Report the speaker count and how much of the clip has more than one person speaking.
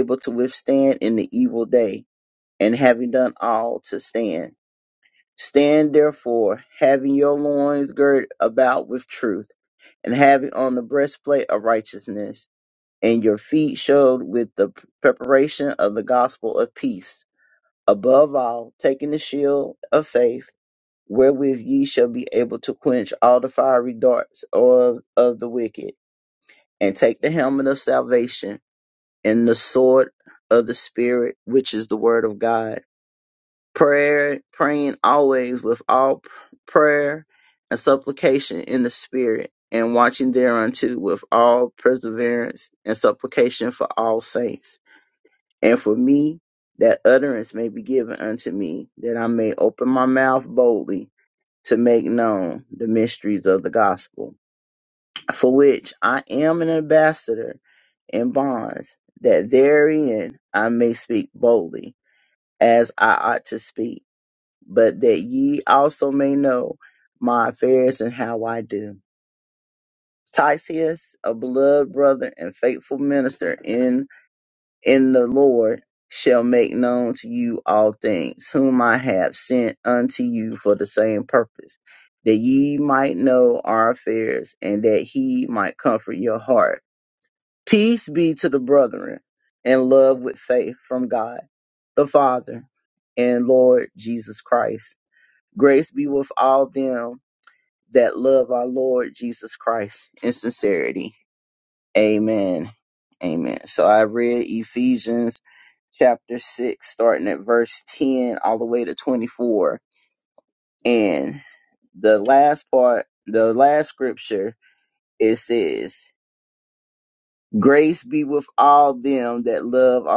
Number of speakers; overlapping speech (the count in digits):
1, no overlap